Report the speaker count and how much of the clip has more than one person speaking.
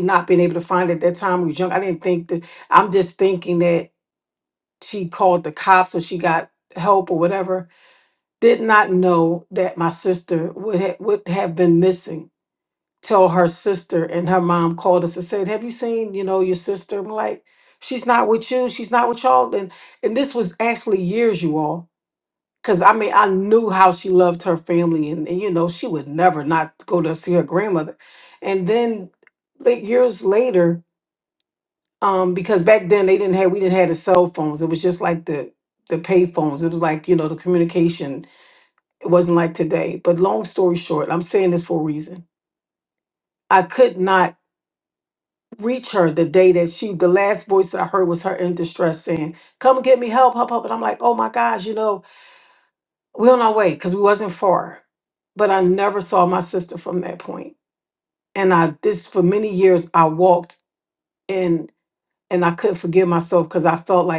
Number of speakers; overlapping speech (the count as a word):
one, no overlap